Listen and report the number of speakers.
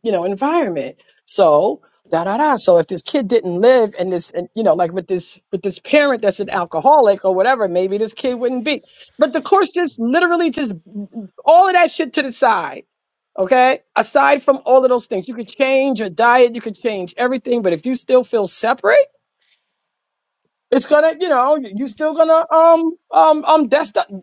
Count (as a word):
one